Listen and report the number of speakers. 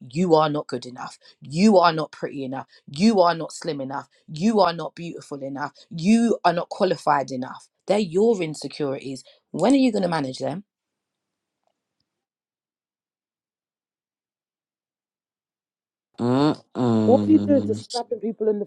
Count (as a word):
three